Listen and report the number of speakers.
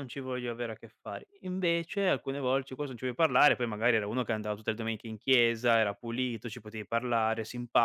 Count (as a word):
one